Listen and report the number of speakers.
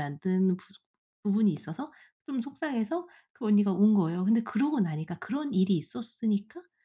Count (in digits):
1